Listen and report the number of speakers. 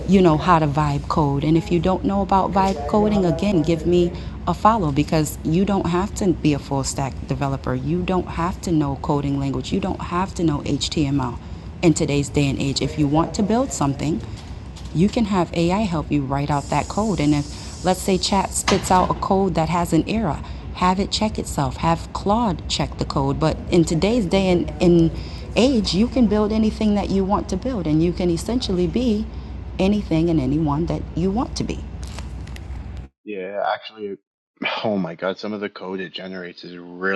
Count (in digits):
2